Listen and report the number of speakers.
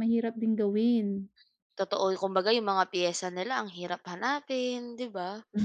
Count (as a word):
two